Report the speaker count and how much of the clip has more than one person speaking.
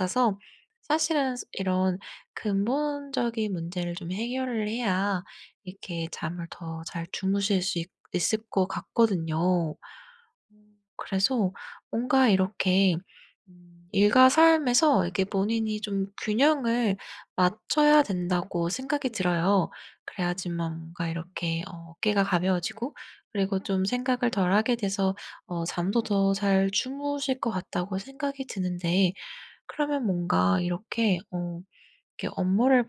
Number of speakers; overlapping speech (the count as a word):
one, no overlap